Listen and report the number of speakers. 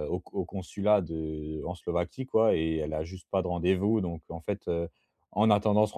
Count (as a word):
one